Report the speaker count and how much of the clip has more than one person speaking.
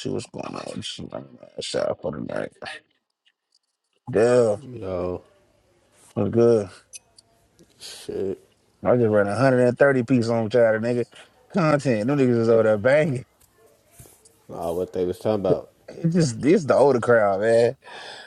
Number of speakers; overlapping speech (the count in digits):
2, no overlap